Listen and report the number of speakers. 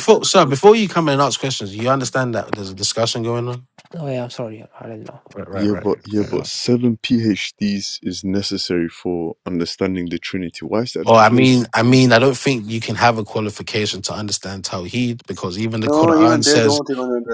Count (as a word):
four